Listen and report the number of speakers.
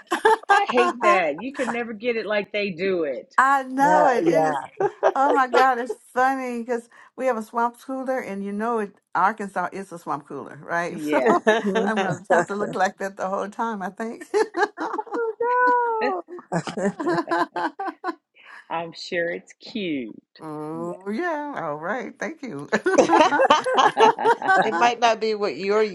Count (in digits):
4